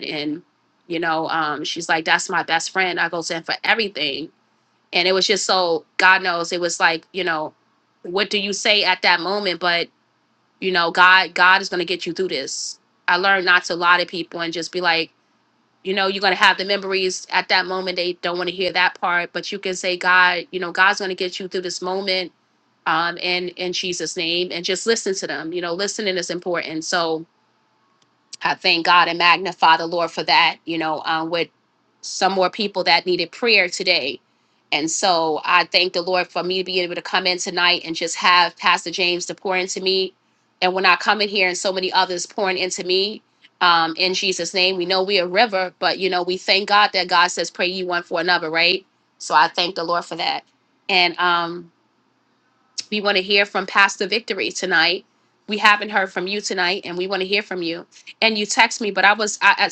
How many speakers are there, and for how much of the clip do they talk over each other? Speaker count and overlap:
one, no overlap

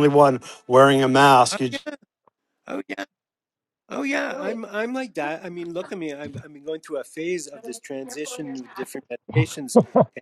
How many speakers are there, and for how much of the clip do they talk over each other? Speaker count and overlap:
two, about 3%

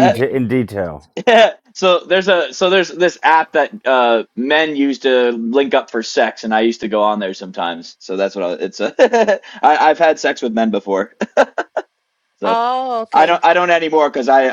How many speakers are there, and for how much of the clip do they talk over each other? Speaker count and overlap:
three, about 5%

